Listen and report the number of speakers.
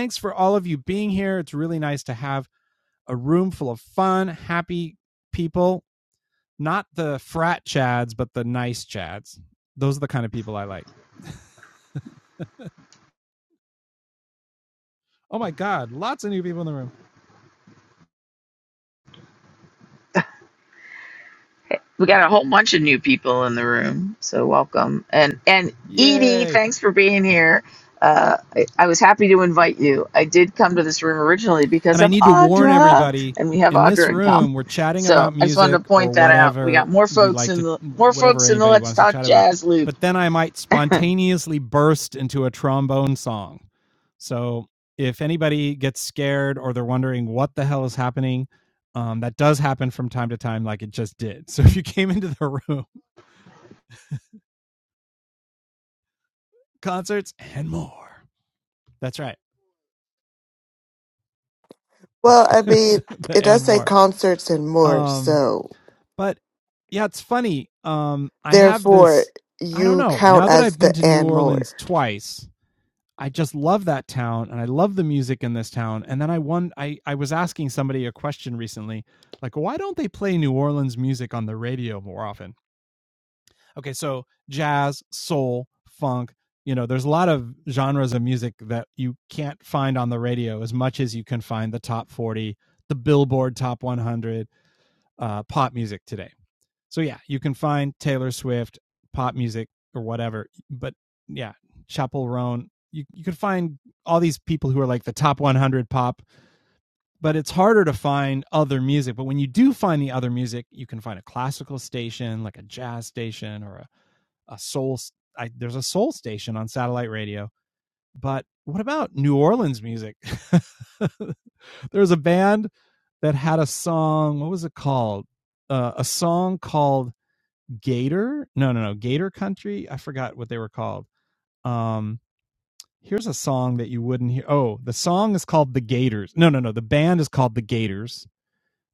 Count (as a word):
three